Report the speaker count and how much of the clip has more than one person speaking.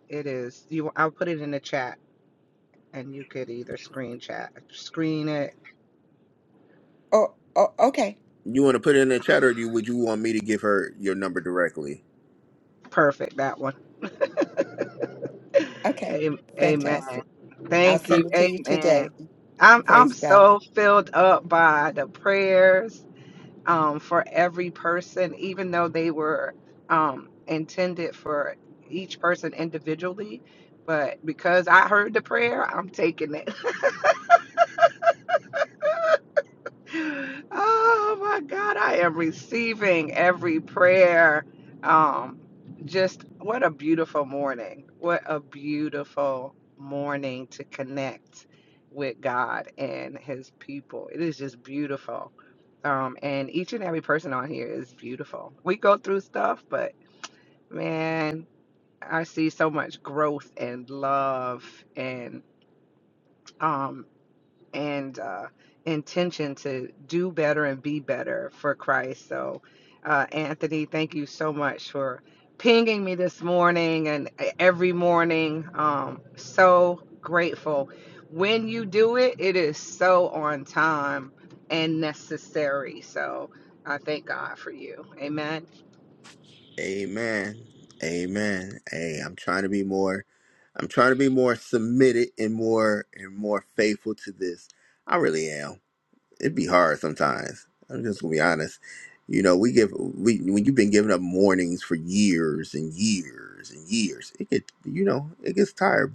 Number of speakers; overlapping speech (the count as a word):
three, about 2%